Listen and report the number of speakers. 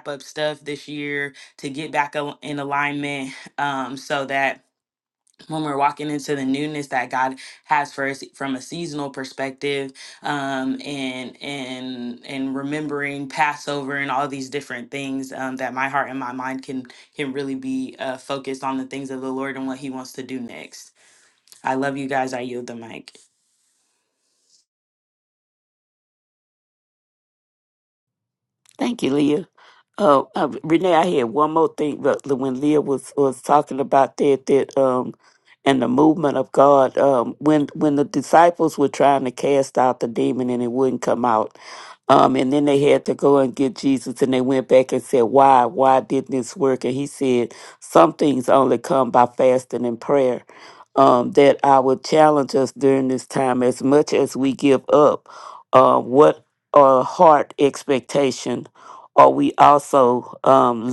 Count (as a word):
two